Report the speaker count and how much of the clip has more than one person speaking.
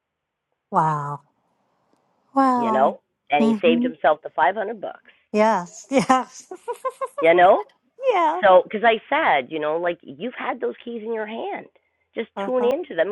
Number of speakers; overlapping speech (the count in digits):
2, about 8%